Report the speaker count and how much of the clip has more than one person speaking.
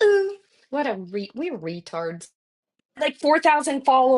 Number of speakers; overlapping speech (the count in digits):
1, no overlap